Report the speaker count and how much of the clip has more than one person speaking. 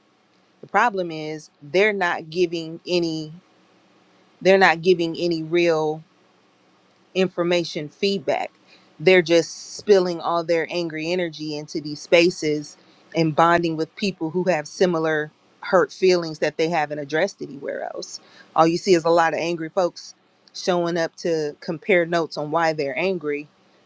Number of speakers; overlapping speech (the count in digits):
1, no overlap